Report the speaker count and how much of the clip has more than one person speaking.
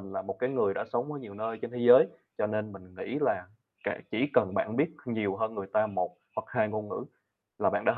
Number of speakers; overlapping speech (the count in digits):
1, no overlap